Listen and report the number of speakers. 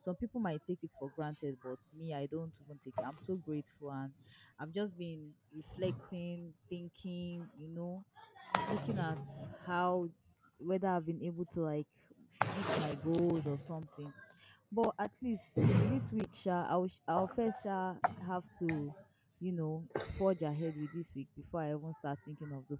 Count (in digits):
1